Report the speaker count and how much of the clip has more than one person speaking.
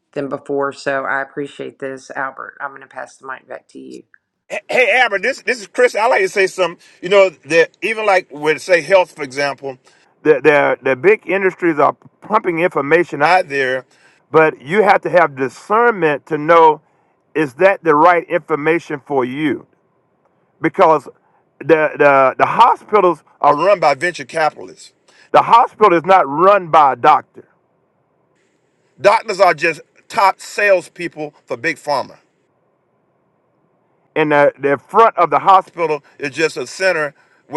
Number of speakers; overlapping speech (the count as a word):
two, no overlap